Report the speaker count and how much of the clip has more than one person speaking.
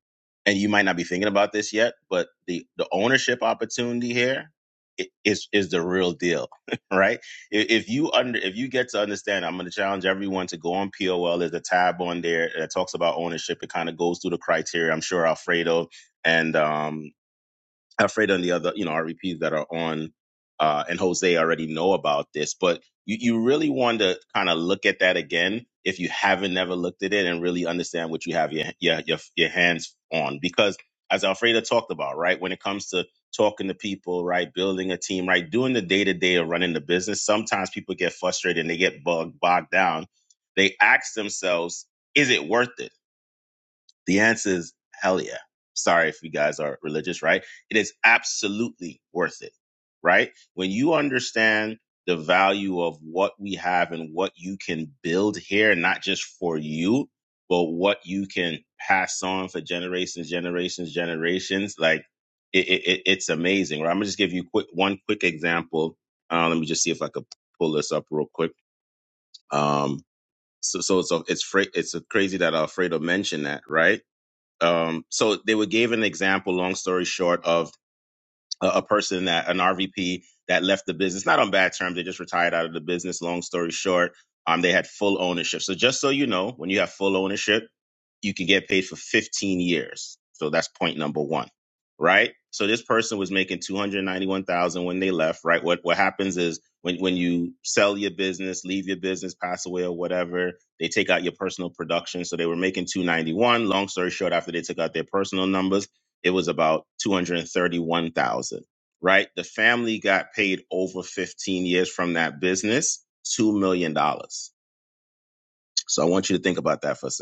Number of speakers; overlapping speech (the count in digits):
1, no overlap